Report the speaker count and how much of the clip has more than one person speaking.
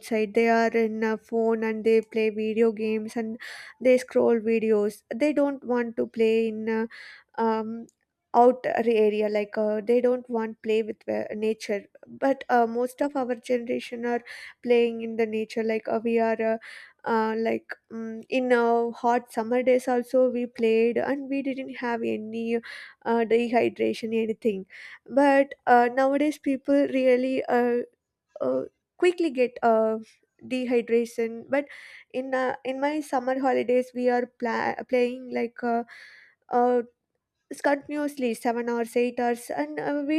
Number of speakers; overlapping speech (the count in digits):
1, no overlap